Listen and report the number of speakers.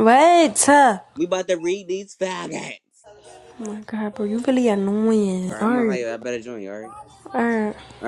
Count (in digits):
2